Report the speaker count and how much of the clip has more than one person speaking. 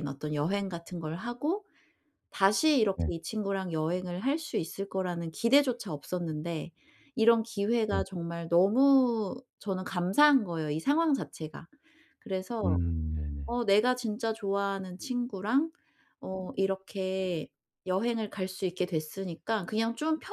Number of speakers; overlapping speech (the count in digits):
2, about 2%